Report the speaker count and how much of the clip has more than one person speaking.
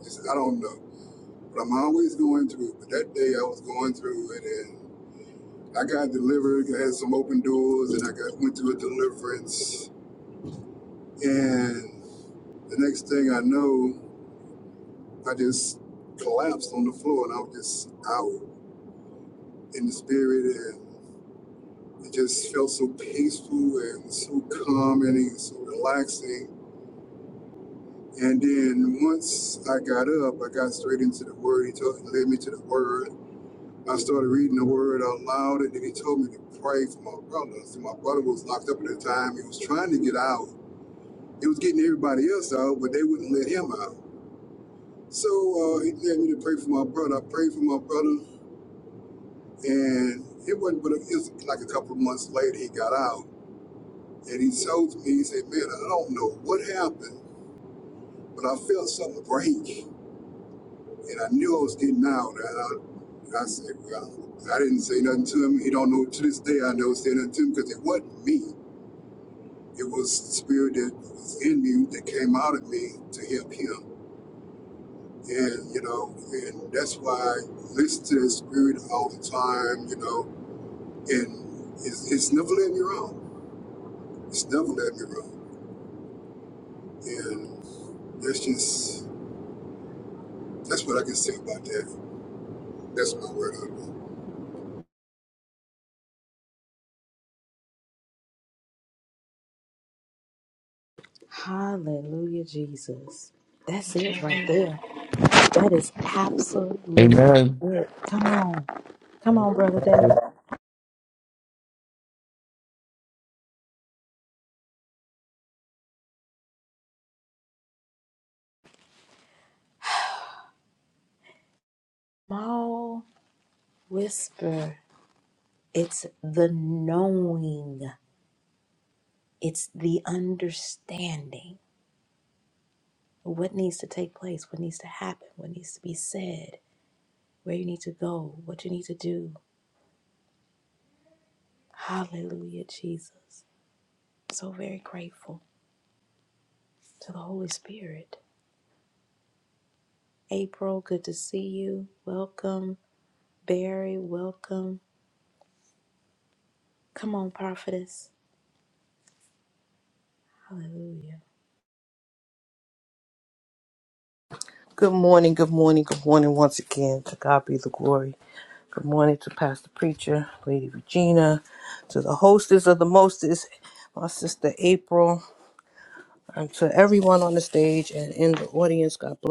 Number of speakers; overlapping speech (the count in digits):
4, about 1%